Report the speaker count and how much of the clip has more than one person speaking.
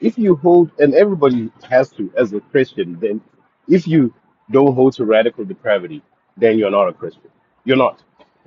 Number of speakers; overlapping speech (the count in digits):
1, no overlap